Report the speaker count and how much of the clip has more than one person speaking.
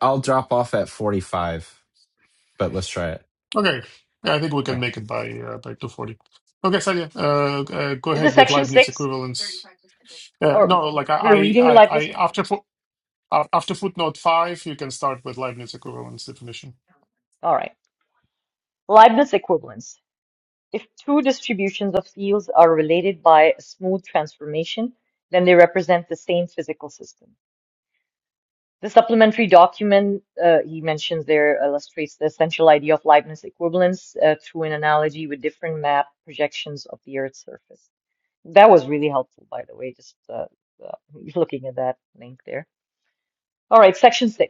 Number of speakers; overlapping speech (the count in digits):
3, about 5%